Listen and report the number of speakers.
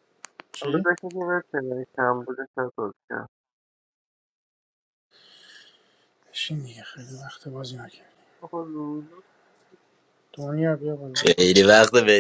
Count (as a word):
three